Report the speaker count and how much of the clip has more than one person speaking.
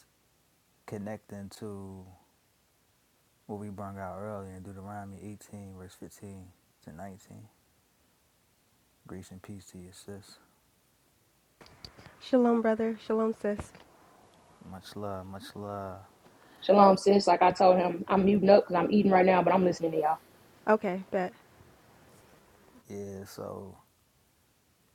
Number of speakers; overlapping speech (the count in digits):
3, no overlap